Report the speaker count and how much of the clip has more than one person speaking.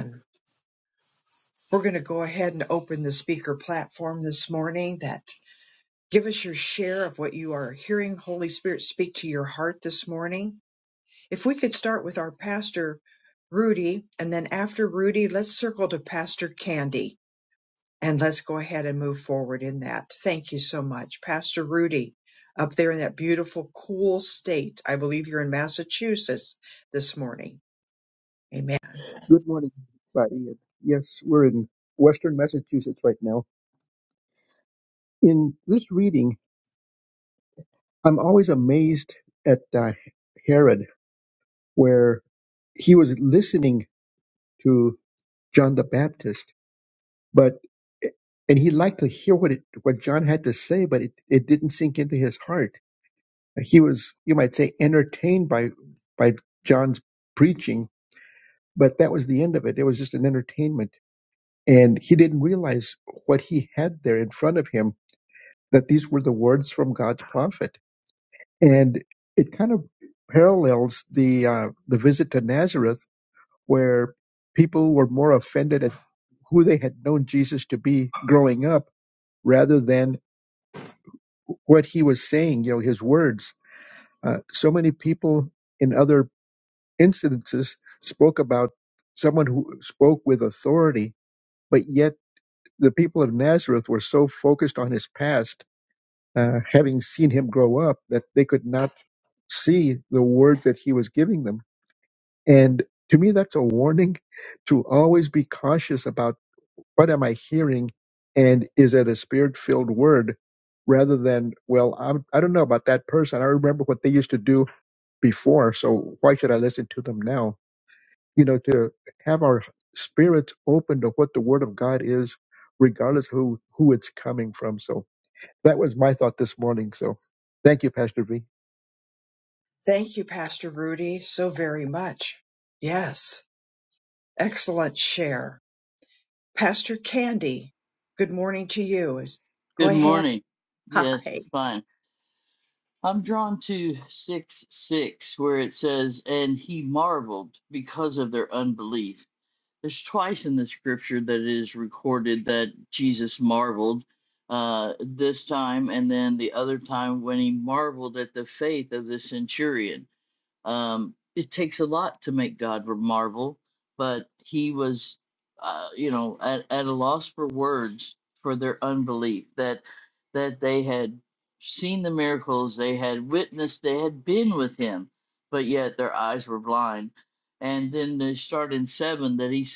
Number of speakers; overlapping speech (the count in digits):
3, about 1%